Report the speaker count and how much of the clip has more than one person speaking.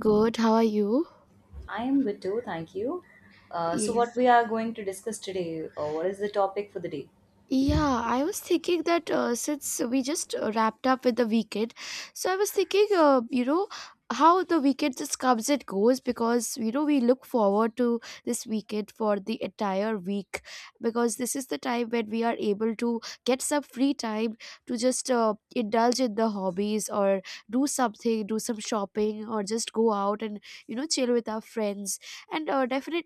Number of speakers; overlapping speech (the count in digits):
2, about 1%